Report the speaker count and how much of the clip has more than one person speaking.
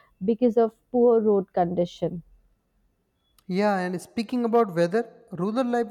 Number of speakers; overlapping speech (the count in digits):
2, no overlap